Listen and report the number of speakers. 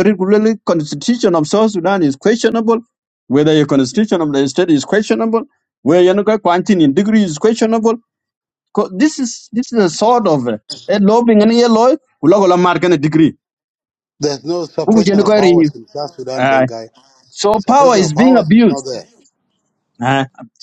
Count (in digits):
2